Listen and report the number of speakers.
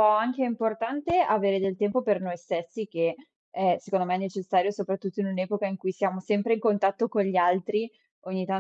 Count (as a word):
one